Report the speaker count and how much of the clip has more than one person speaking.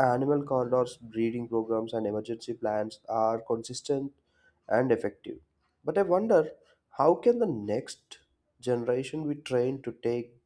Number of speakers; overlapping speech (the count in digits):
1, no overlap